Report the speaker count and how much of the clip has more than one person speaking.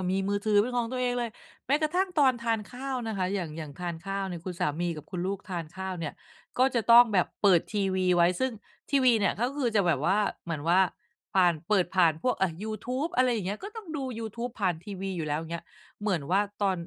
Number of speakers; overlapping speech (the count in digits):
1, no overlap